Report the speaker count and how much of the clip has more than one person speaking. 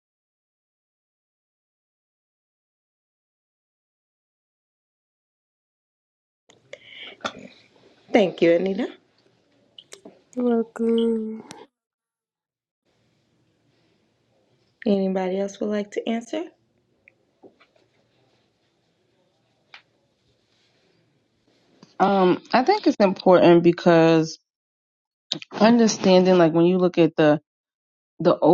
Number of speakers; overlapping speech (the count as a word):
three, no overlap